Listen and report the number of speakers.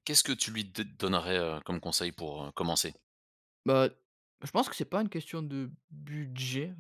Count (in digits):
2